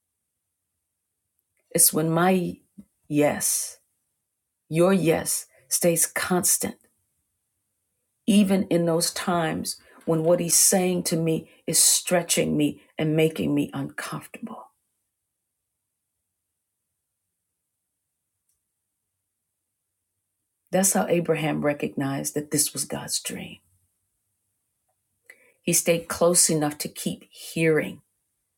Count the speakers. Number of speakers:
1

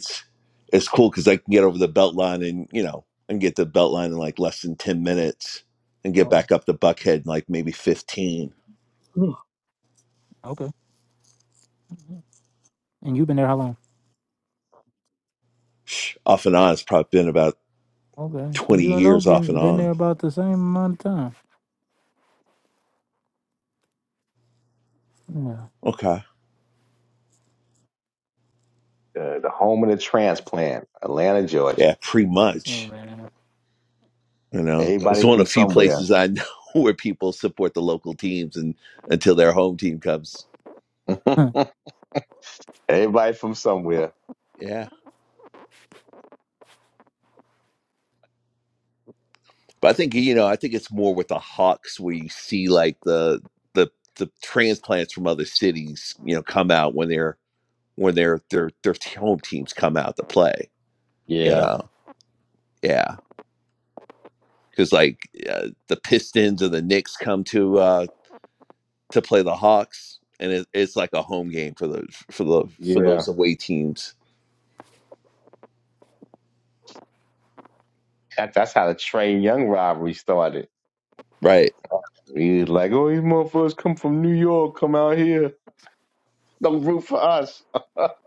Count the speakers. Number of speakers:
3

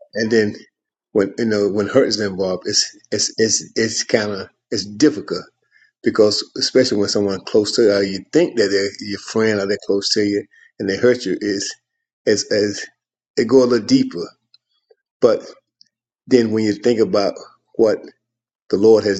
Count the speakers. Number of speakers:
1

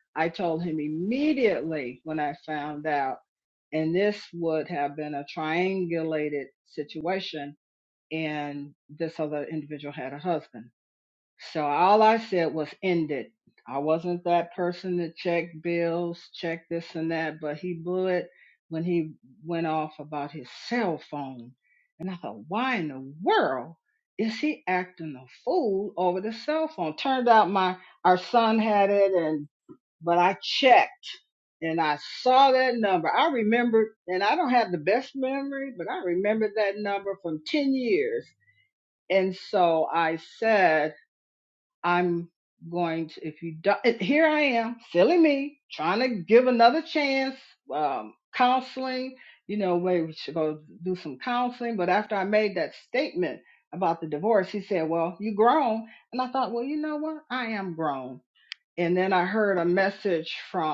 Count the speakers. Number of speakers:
1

